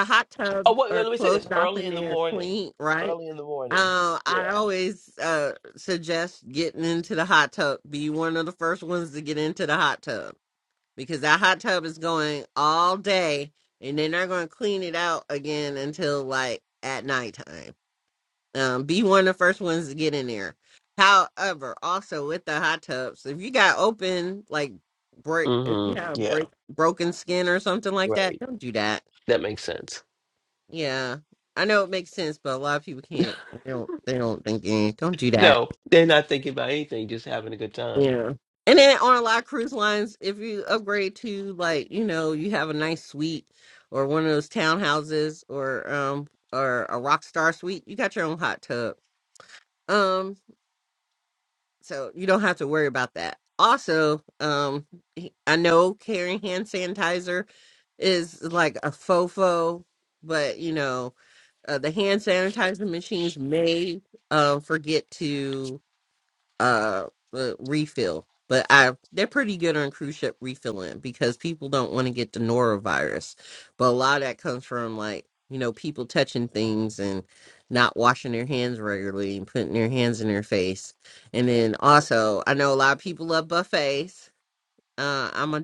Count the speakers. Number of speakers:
two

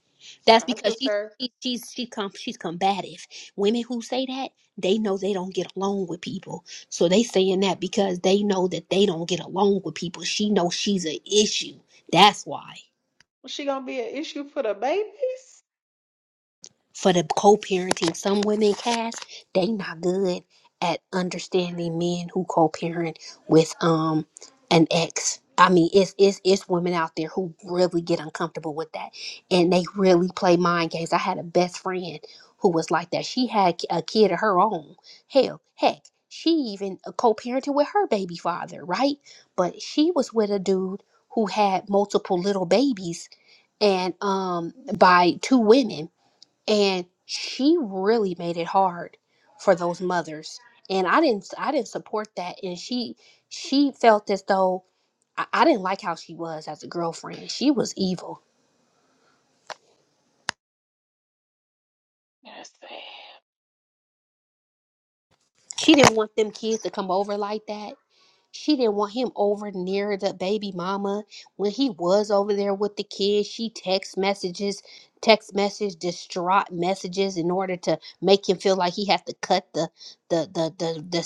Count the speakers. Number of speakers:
two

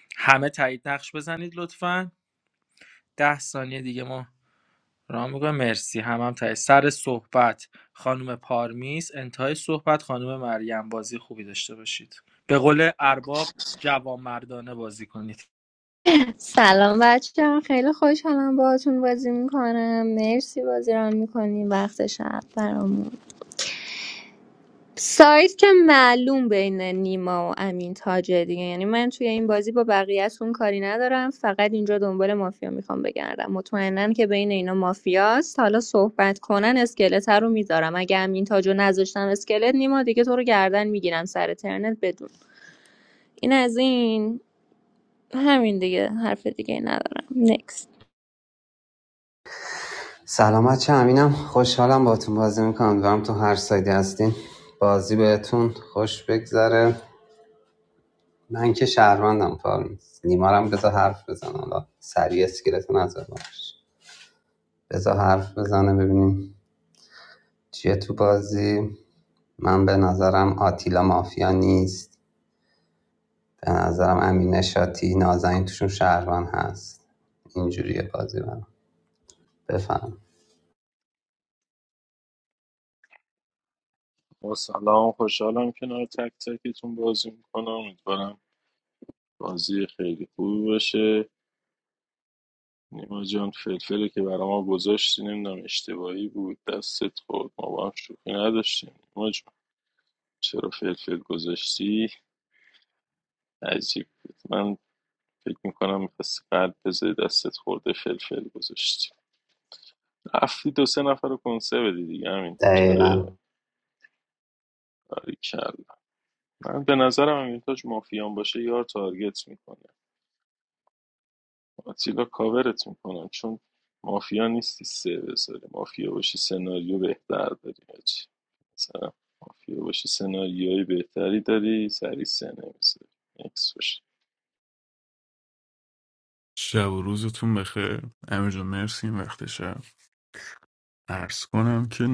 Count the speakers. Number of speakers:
five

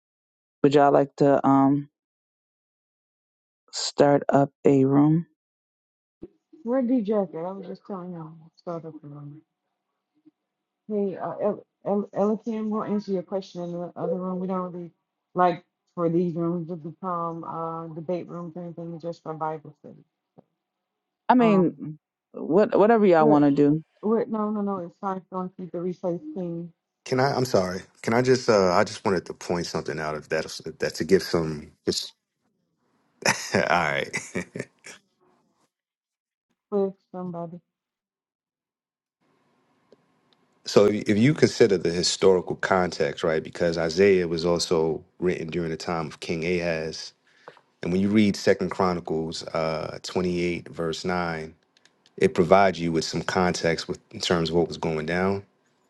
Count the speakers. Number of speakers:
three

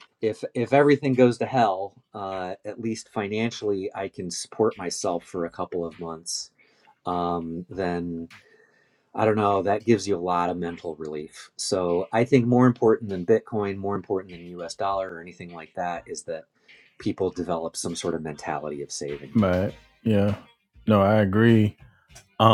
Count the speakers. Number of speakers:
two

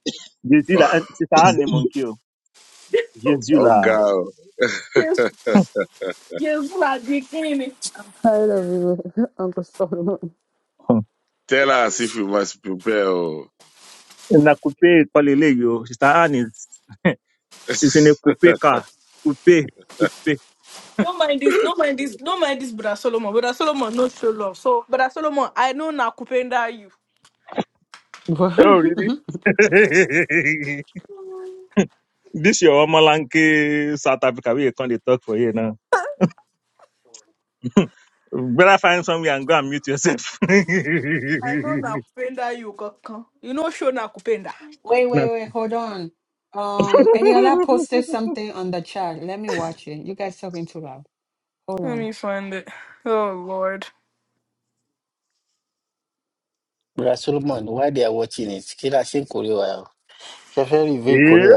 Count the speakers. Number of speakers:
five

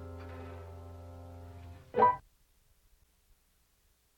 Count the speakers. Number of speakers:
zero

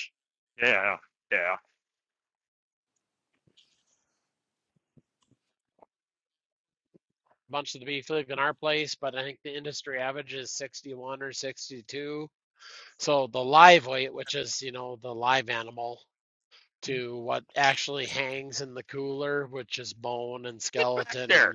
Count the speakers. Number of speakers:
two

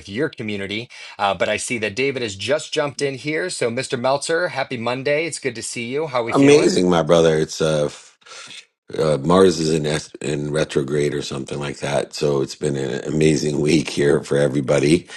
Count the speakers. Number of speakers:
two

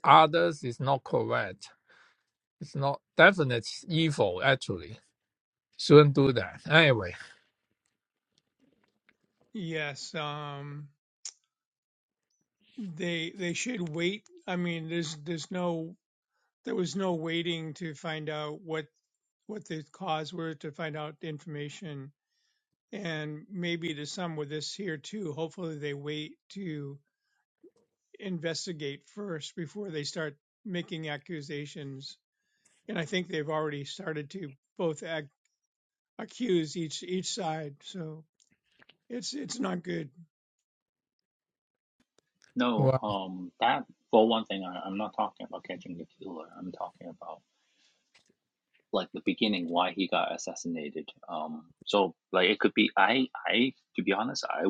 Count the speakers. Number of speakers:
three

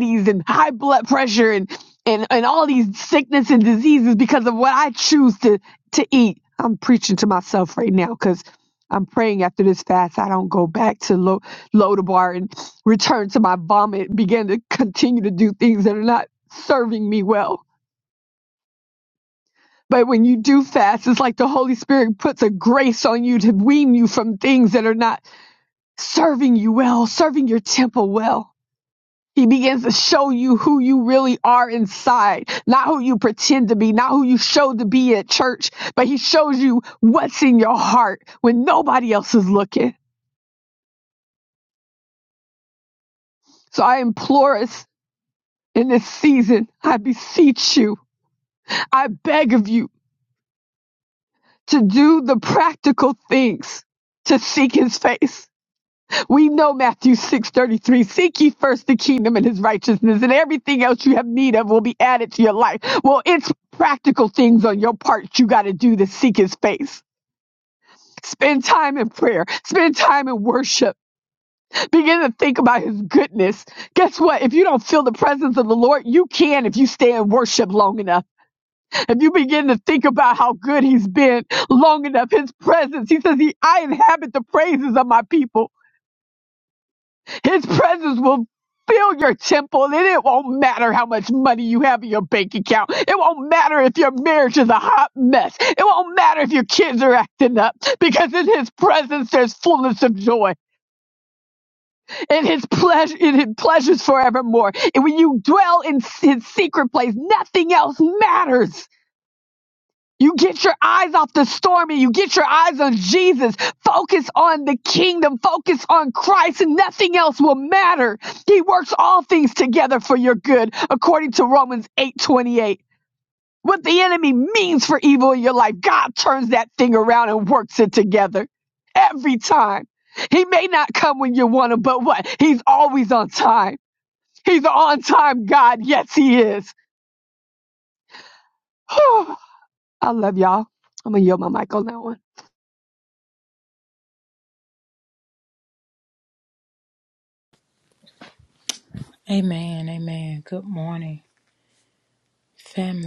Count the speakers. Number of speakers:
two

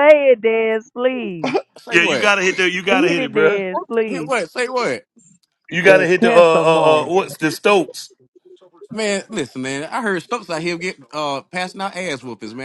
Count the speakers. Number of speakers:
three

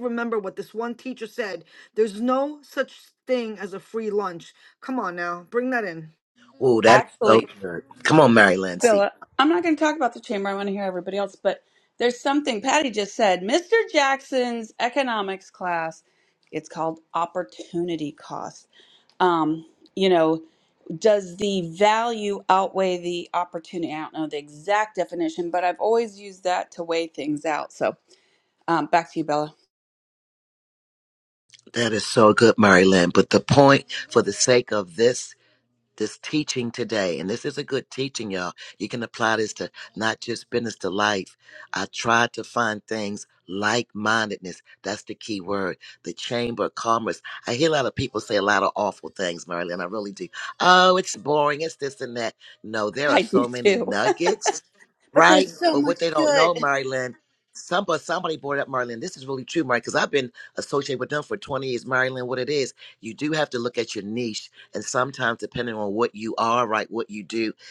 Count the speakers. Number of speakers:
three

